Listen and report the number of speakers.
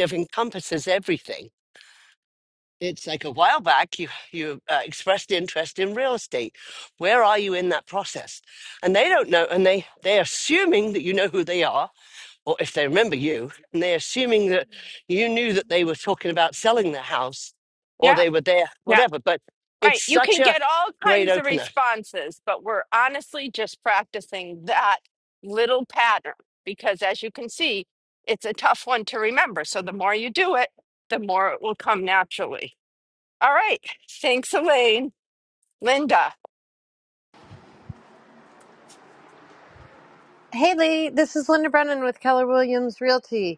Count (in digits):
3